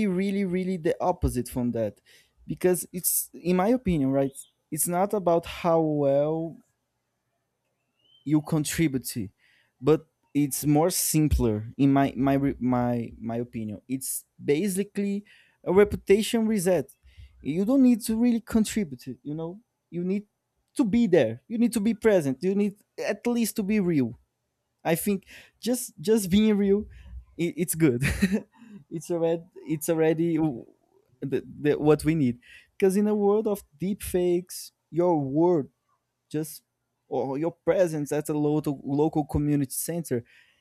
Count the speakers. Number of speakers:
1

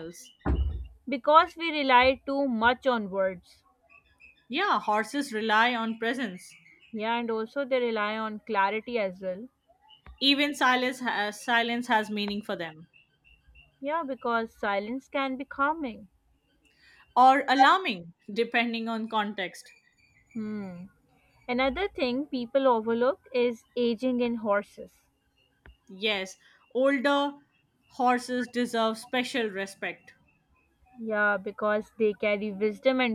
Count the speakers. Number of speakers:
2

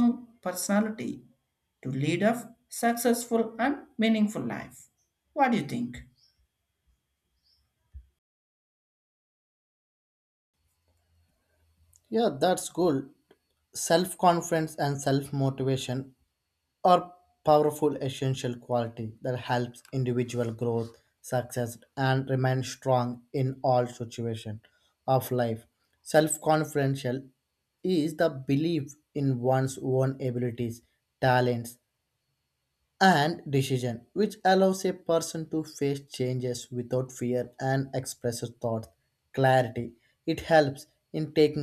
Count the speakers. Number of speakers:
2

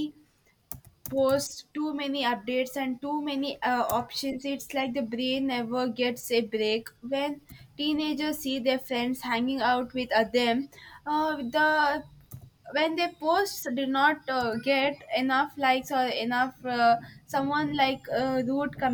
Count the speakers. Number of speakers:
1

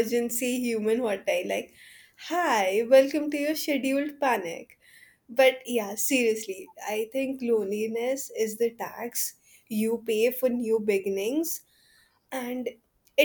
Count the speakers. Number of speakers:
1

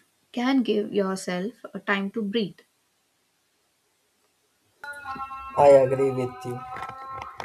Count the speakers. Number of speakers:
2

